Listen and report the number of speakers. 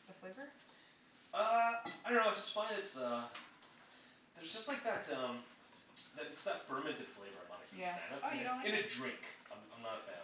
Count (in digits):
2